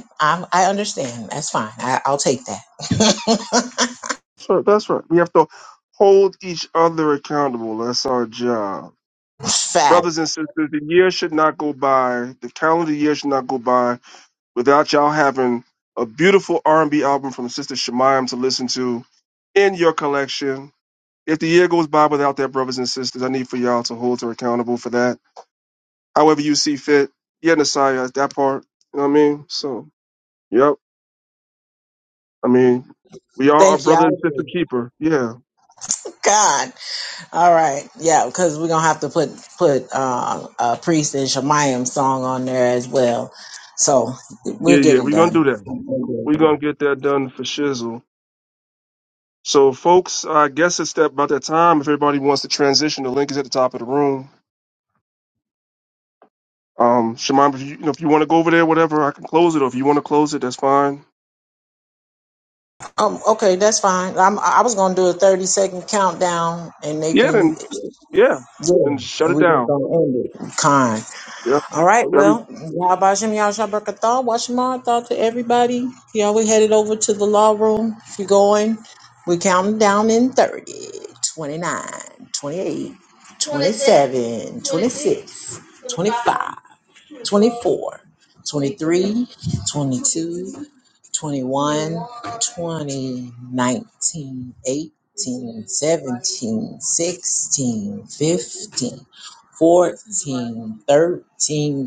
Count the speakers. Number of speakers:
two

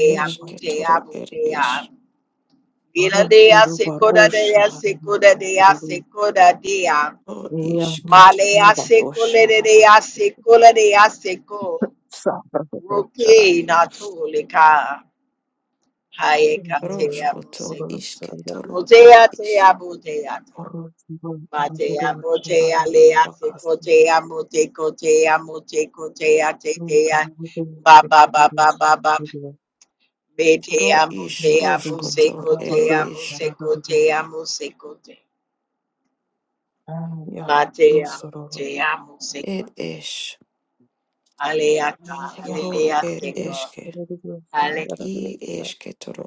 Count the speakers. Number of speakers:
three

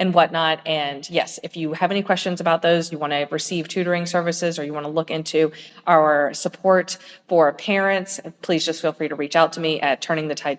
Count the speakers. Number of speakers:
one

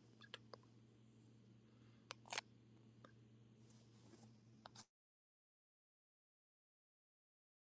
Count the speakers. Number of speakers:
zero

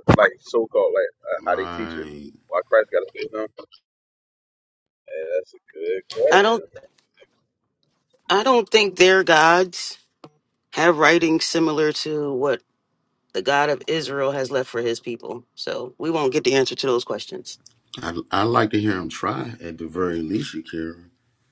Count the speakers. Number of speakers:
three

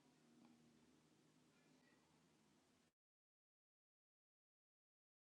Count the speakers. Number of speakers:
zero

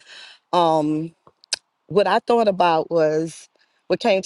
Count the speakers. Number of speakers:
one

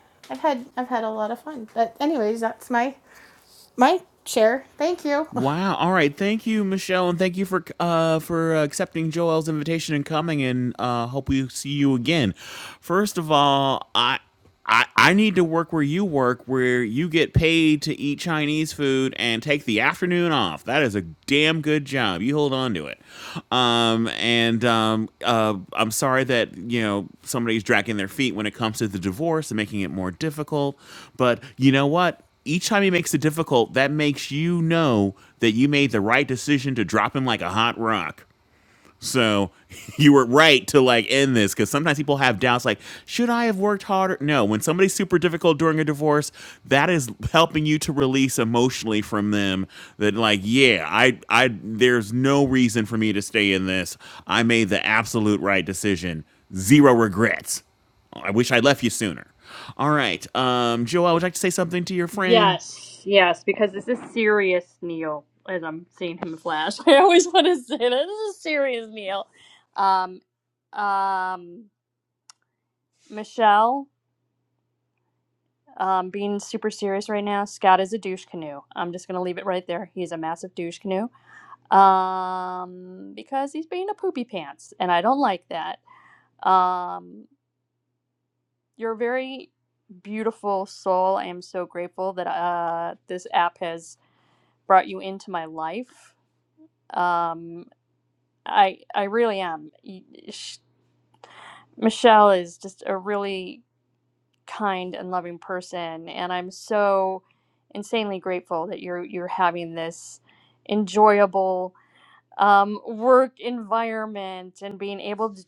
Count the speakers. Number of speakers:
three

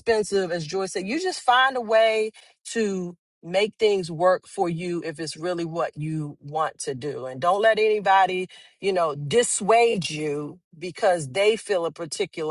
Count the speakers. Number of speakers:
one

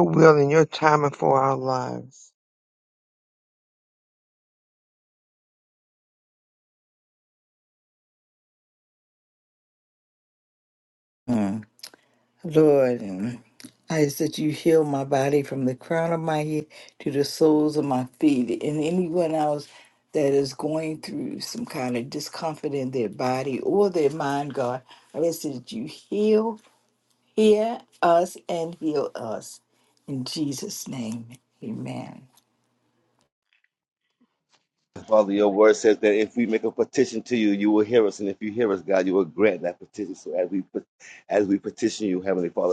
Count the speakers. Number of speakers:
three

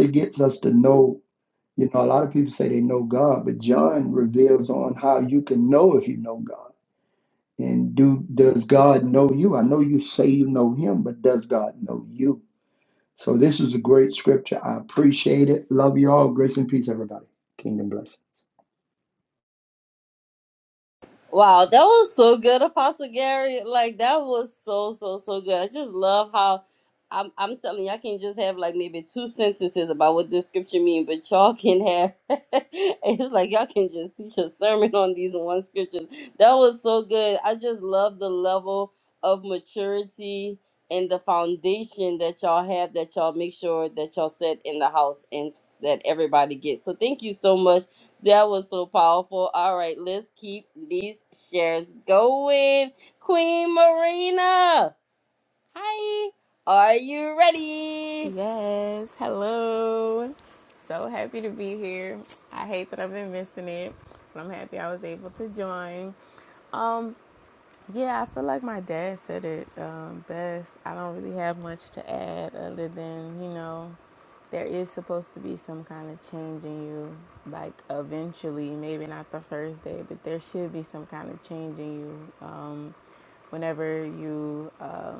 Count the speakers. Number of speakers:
three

